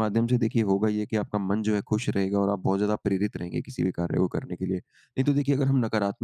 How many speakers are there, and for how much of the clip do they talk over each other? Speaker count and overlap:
one, no overlap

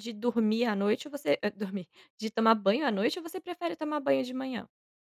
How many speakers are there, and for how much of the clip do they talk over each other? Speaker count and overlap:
one, no overlap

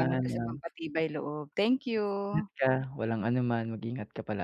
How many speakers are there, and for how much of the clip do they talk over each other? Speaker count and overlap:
two, about 13%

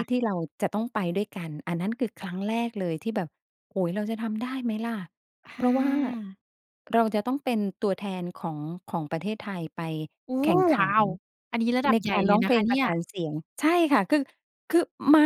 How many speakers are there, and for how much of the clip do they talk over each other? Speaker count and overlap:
two, about 11%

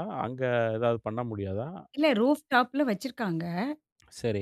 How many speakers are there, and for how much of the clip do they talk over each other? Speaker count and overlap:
two, no overlap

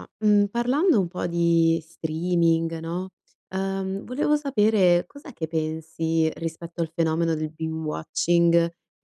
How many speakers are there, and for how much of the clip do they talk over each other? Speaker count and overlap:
one, no overlap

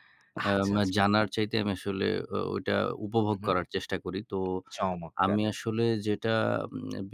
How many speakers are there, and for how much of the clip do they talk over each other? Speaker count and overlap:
two, about 14%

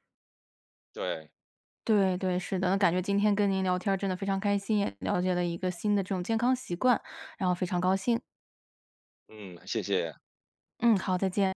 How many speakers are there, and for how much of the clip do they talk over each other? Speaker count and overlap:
two, no overlap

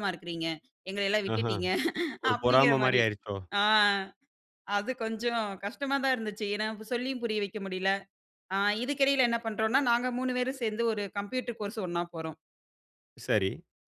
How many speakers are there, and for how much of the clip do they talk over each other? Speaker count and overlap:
two, about 8%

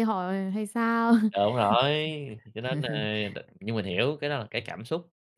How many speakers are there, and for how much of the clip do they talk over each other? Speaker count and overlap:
two, no overlap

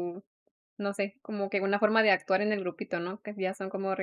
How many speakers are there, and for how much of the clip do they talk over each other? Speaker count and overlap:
one, no overlap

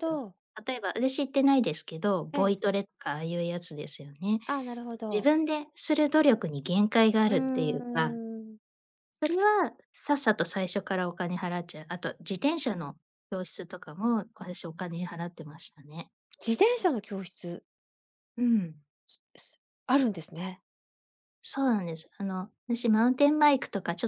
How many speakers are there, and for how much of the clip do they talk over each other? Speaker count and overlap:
two, about 6%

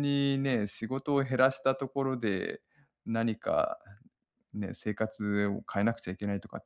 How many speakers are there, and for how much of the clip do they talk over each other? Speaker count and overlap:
one, no overlap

